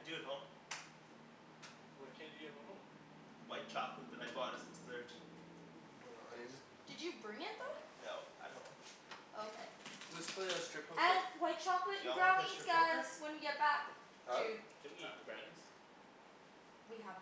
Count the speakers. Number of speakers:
4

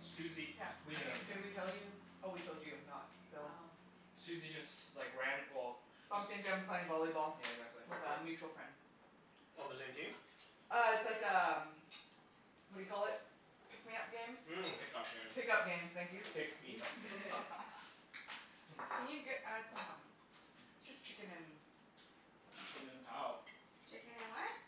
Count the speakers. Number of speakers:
4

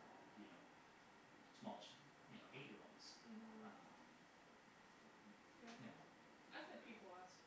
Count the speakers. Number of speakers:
2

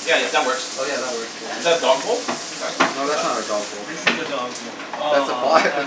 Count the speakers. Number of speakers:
3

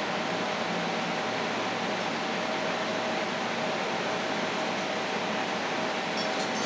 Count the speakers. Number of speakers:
0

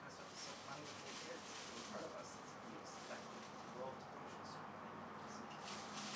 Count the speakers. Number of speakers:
1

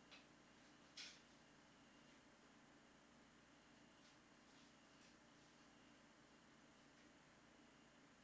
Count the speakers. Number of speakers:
0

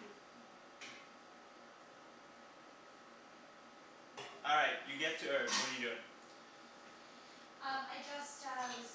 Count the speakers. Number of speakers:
2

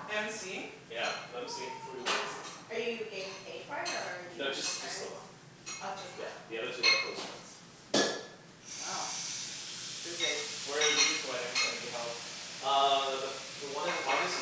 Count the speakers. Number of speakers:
4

